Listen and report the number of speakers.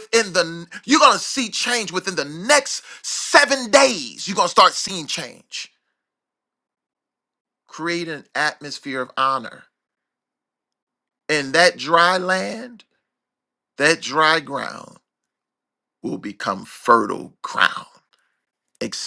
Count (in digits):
1